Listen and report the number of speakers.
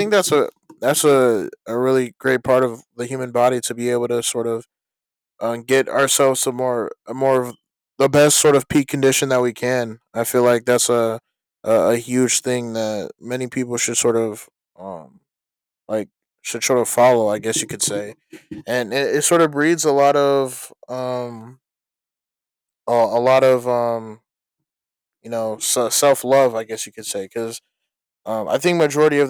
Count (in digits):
1